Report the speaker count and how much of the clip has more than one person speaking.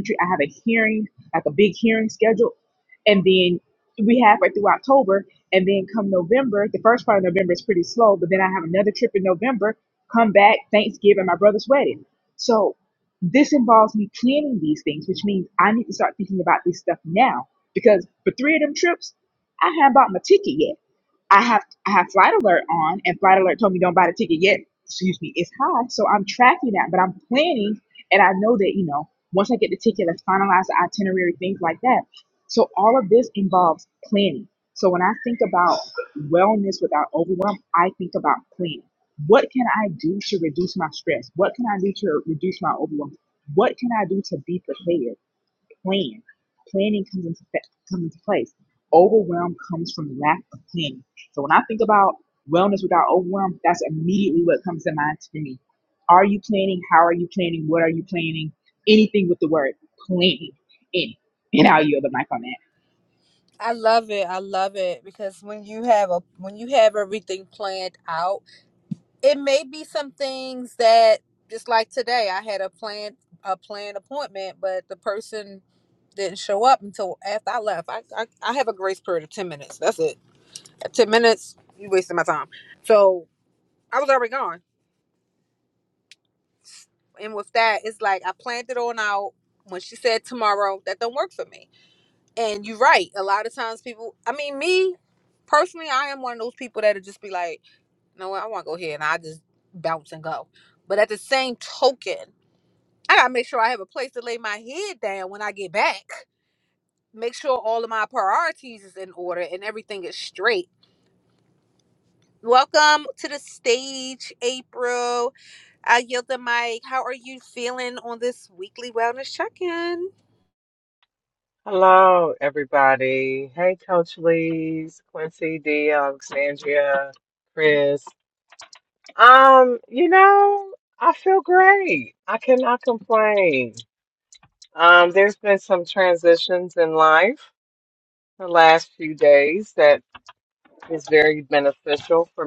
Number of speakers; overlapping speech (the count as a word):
three, no overlap